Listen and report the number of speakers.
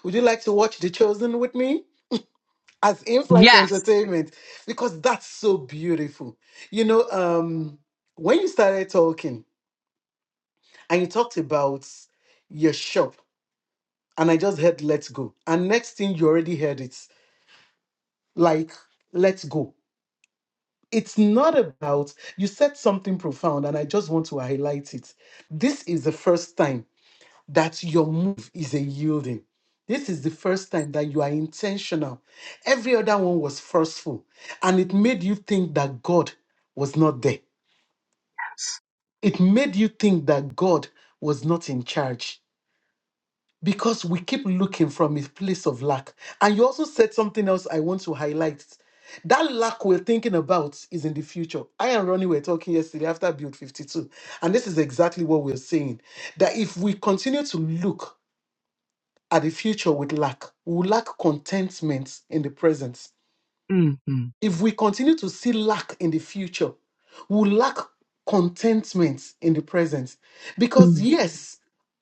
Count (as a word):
two